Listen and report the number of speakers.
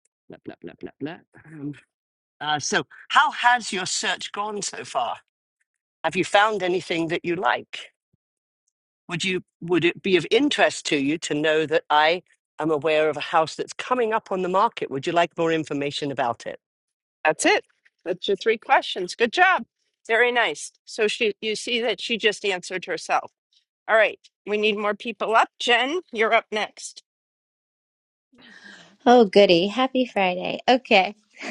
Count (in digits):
3